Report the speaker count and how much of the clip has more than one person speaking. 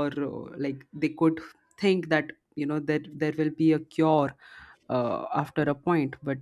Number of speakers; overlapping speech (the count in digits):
1, no overlap